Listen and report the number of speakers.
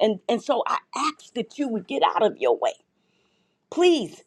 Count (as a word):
one